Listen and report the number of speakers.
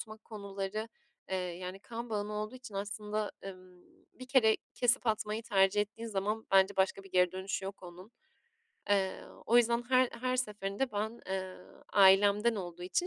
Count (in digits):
1